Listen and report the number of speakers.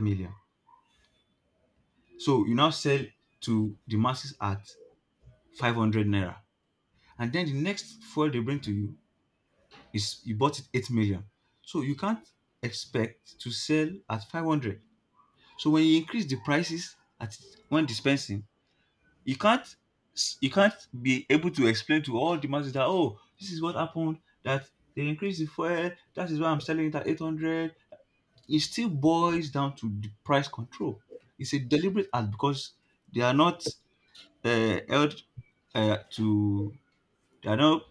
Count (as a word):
one